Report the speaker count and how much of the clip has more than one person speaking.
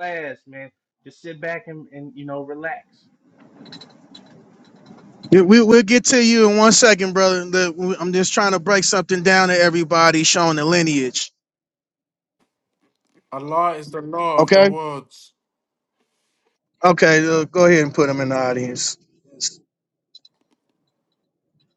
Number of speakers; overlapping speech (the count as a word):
three, about 2%